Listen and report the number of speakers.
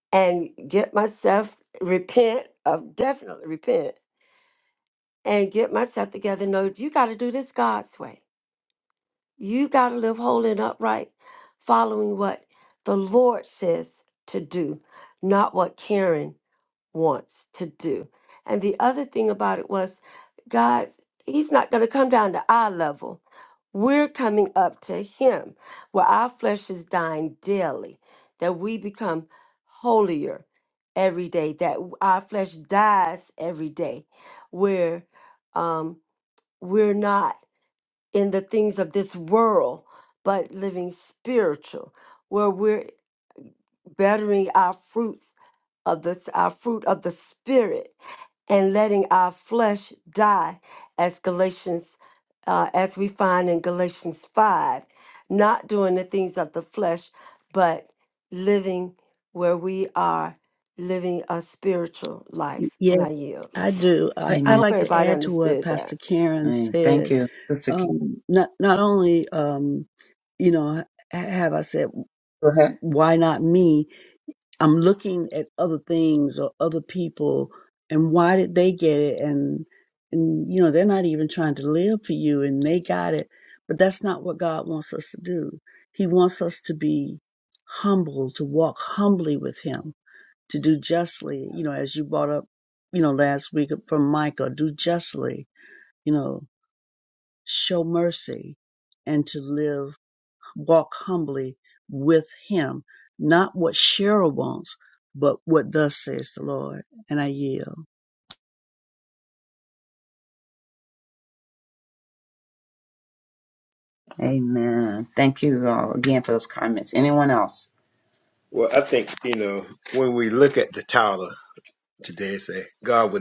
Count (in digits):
4